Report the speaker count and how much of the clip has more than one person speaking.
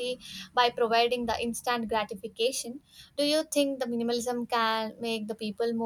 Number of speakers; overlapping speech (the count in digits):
1, no overlap